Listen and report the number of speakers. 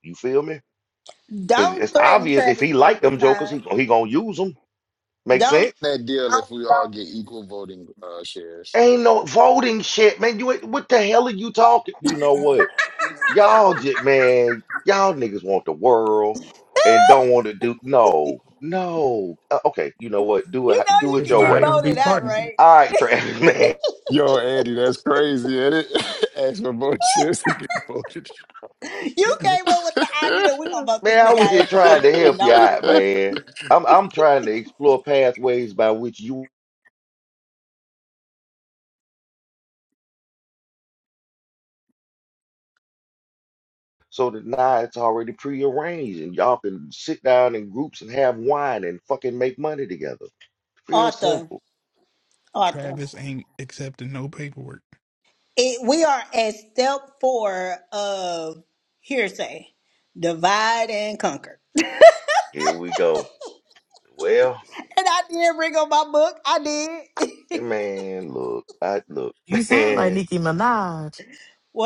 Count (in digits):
5